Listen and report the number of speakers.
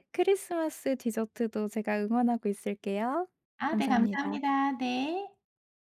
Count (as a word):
two